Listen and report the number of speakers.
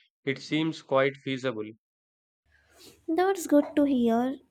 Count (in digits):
2